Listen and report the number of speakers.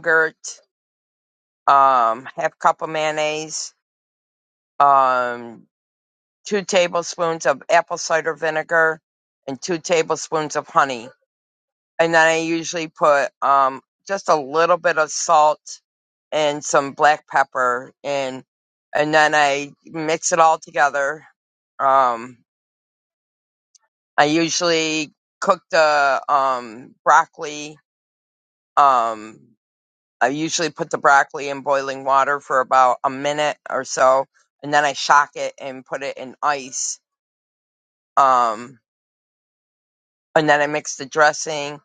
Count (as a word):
one